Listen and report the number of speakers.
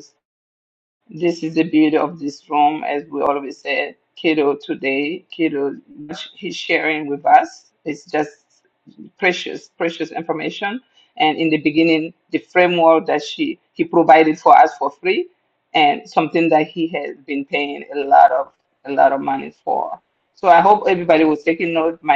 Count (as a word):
one